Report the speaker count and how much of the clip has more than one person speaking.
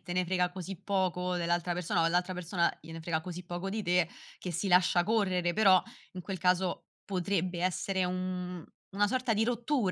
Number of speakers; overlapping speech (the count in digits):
1, no overlap